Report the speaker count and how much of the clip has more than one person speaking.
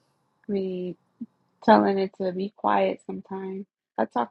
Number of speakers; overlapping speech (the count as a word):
one, no overlap